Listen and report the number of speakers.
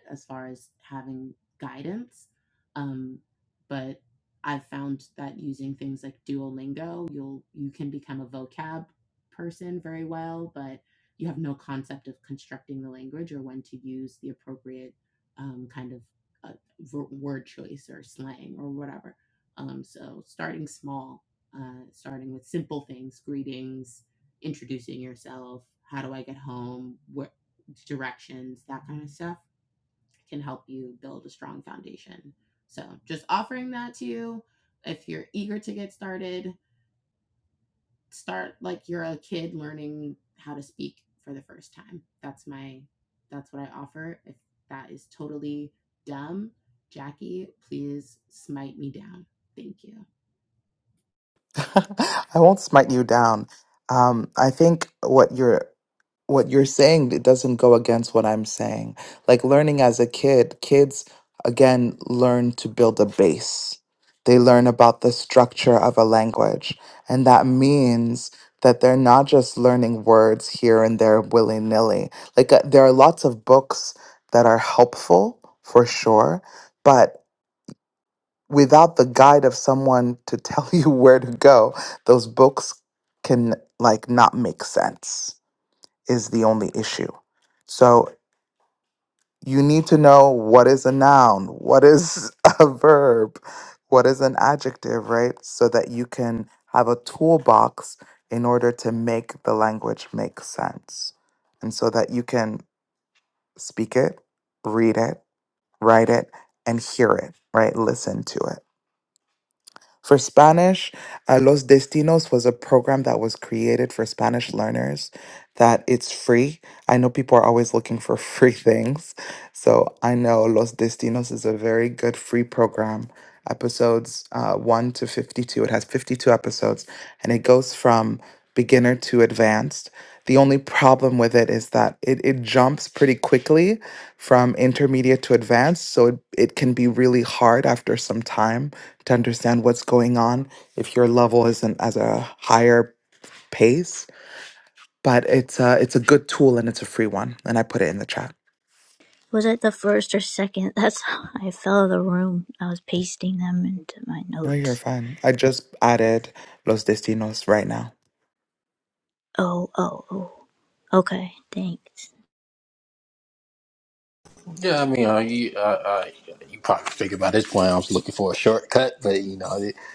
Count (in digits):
4